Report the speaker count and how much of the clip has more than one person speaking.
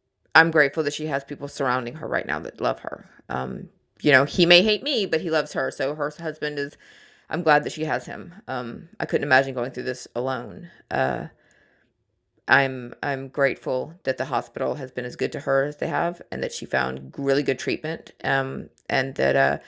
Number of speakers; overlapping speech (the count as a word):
one, no overlap